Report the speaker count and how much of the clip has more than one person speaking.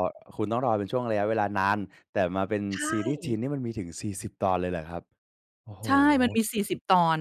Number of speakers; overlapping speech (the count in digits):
2, about 3%